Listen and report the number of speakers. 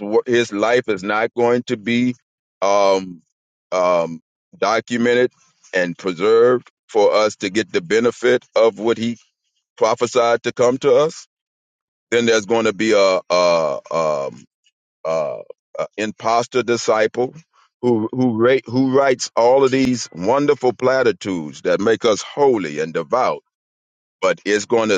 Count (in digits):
1